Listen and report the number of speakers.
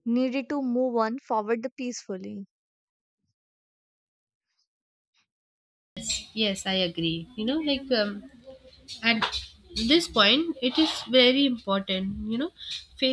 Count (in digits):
2